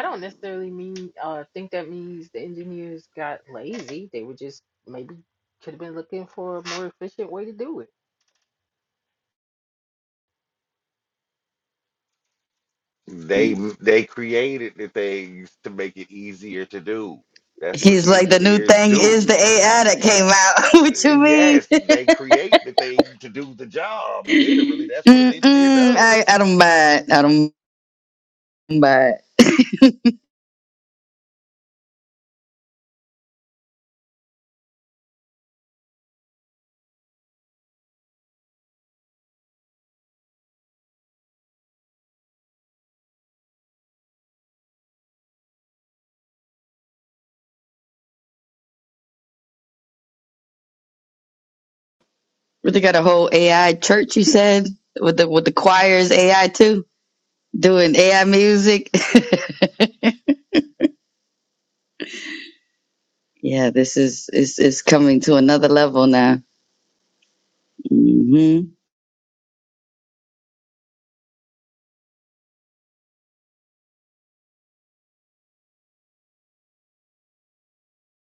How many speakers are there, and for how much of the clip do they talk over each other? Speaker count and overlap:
three, about 4%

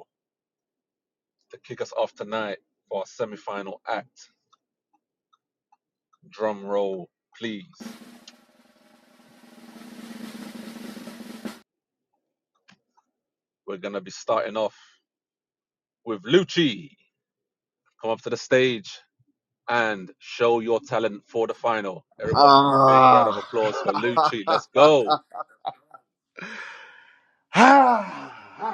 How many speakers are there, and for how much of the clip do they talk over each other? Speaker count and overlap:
two, about 4%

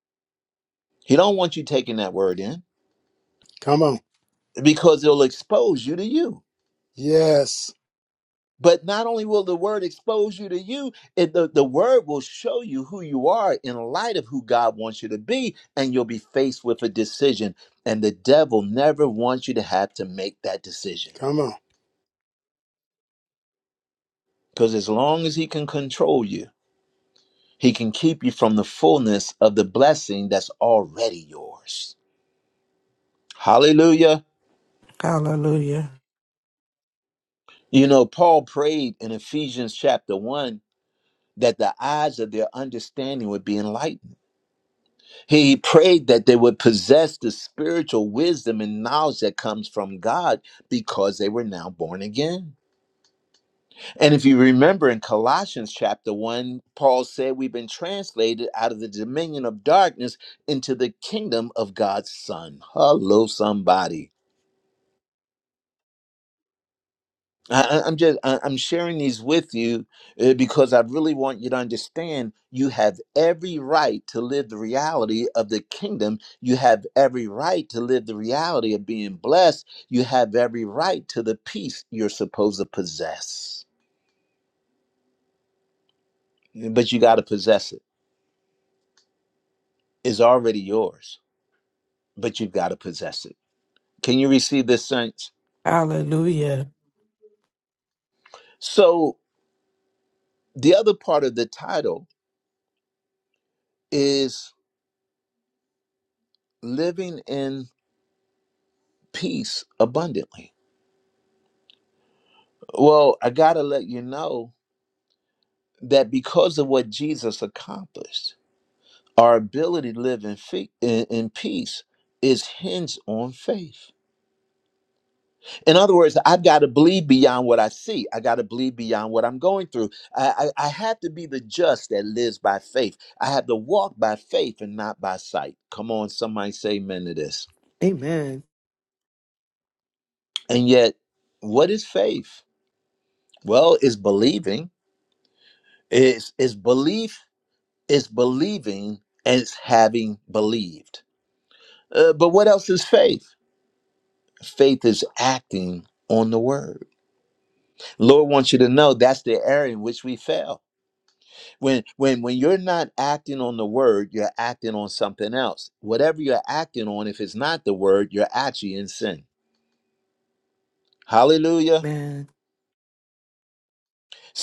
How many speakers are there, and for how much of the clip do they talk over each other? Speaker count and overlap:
four, no overlap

